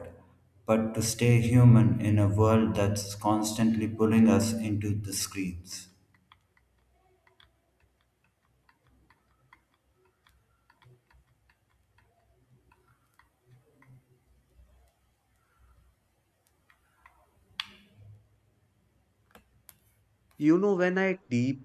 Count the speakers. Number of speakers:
2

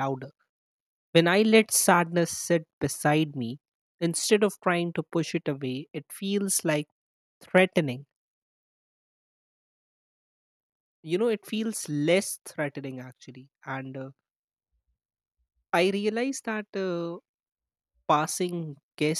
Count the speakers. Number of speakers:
1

